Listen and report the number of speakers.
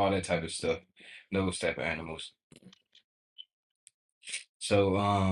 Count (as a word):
one